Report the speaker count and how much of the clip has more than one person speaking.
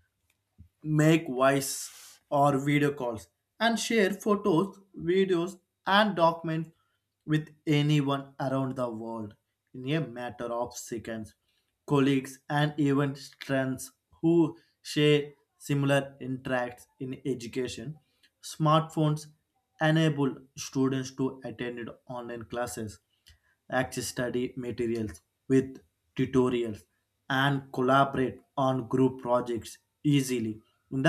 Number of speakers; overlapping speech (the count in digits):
1, no overlap